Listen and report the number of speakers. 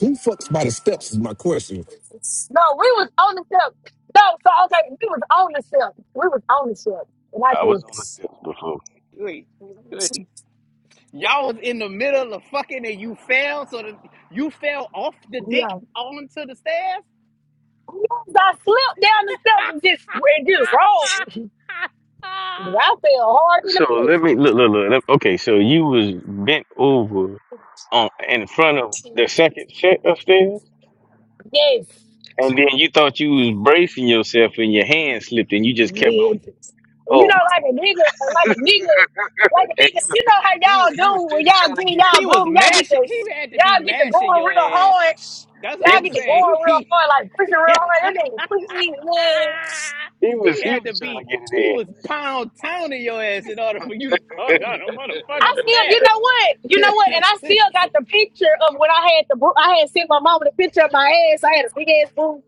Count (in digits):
4